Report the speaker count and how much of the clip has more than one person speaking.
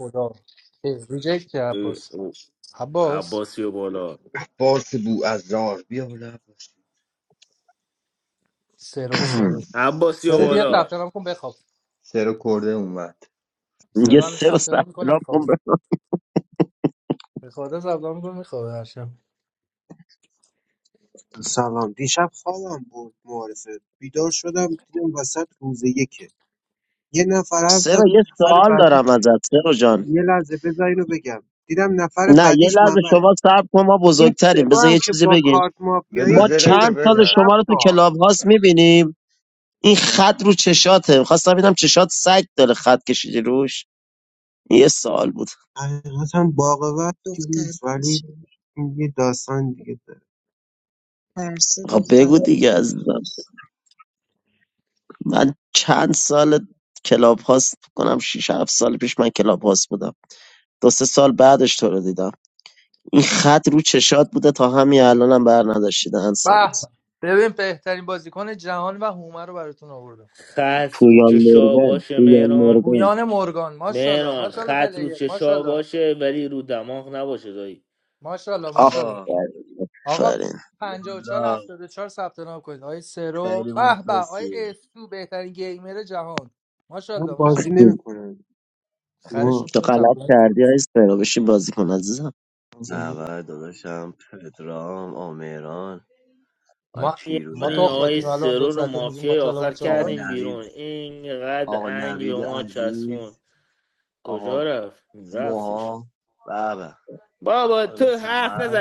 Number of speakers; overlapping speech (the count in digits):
7, about 23%